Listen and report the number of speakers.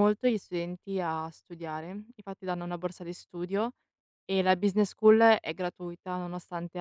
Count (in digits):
1